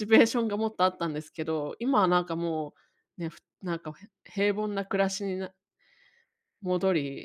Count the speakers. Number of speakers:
1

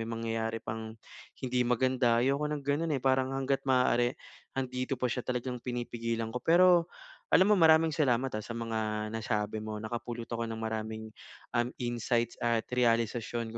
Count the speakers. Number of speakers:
1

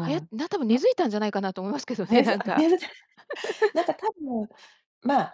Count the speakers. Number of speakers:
2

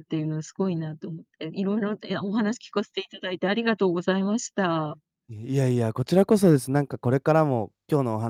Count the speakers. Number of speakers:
2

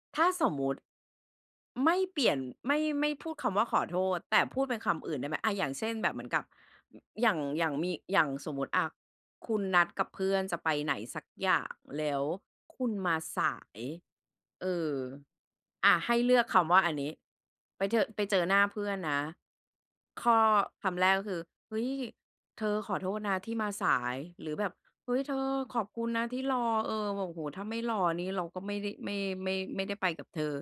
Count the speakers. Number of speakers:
1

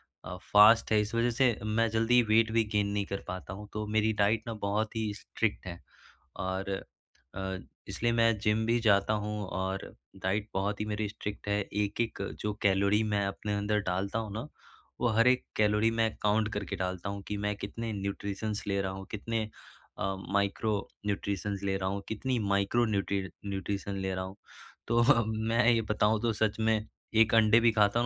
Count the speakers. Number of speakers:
1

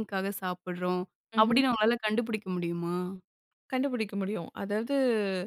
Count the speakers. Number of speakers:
2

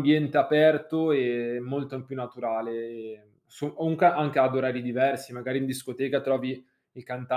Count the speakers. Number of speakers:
1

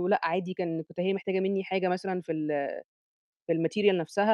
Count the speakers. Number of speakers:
1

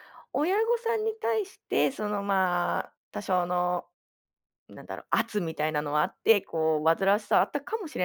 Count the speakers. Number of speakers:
1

